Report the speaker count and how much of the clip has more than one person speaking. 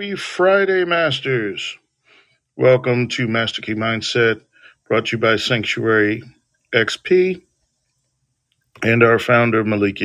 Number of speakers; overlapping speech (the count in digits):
1, no overlap